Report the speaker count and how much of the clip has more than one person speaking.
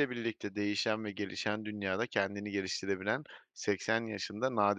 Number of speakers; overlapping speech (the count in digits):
1, no overlap